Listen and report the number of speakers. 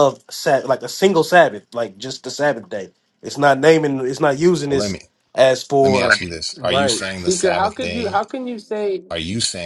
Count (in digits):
3